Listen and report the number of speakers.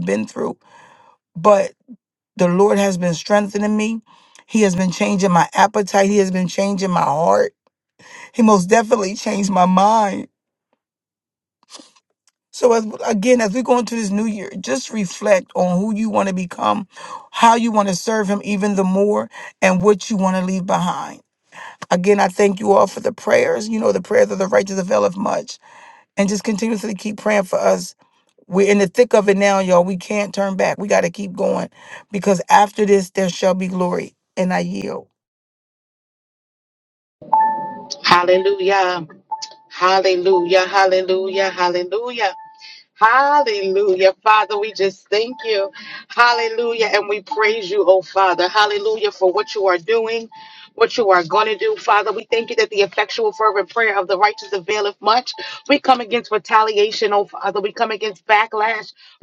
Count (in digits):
2